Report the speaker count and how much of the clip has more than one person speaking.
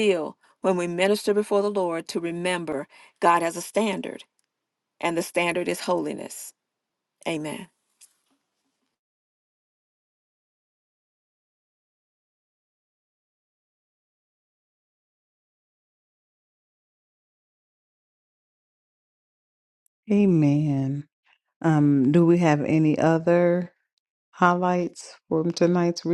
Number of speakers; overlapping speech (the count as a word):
two, no overlap